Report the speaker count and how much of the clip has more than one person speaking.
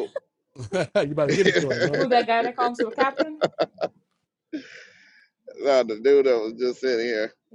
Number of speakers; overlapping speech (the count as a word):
three, about 1%